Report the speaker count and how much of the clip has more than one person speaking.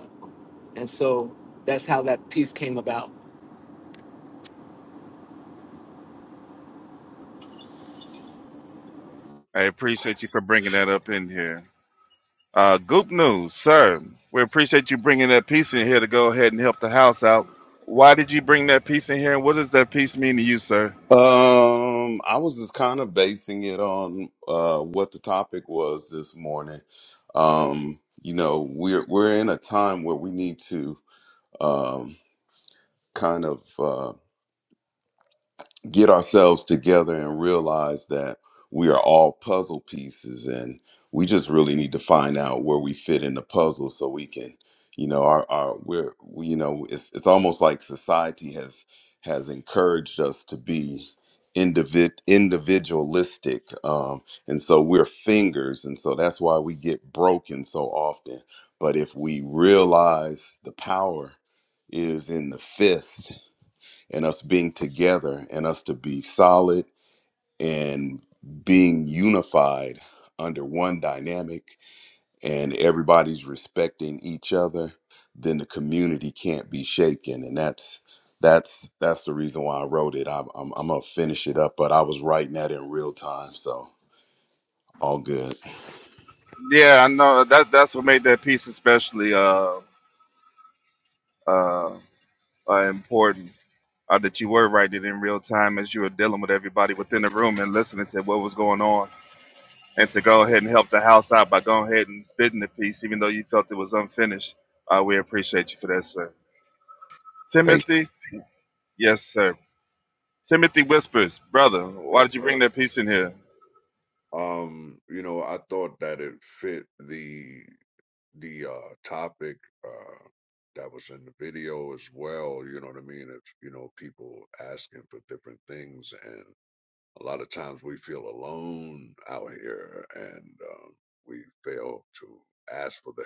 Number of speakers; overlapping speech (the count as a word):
four, about 1%